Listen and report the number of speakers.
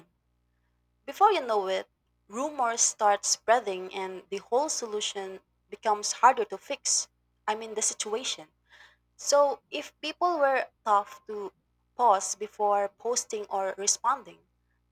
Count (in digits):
1